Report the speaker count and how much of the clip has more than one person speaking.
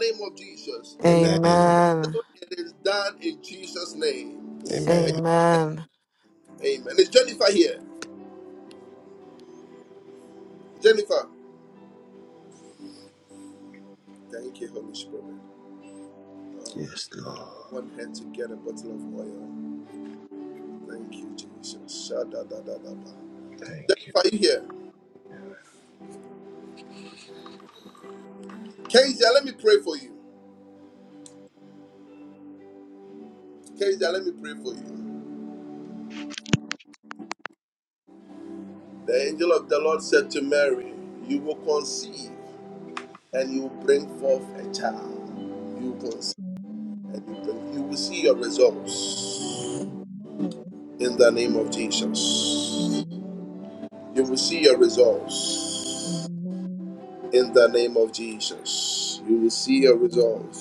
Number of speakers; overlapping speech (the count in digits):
4, about 3%